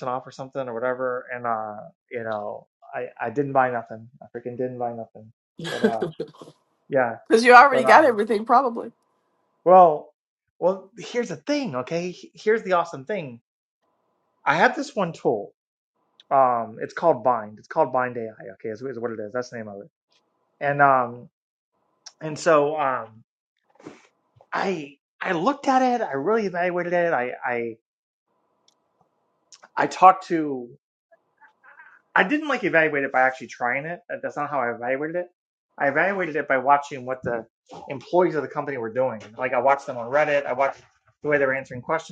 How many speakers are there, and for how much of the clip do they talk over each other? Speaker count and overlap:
two, about 1%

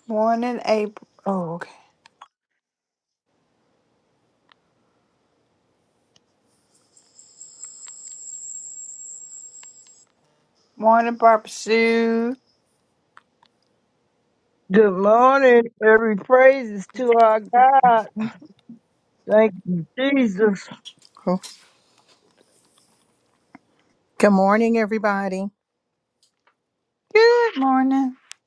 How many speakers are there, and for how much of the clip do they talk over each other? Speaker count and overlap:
three, no overlap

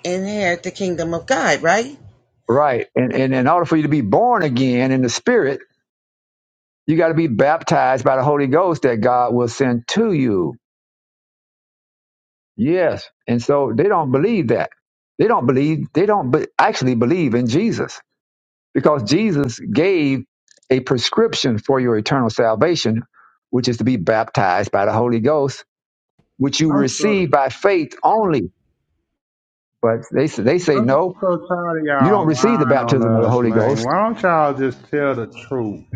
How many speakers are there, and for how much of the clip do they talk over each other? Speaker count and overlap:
three, about 8%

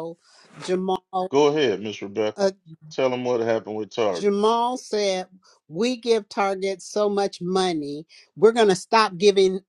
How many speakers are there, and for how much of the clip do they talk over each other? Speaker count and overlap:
two, about 1%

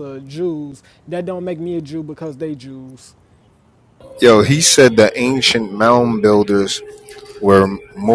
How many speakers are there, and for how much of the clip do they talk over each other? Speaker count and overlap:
two, no overlap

